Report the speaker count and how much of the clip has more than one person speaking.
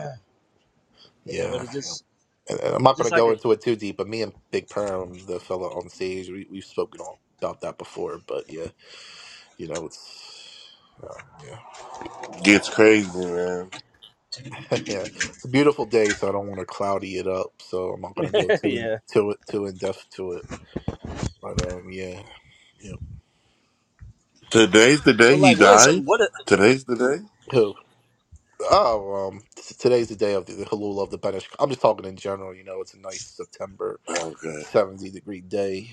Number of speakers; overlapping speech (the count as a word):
three, about 6%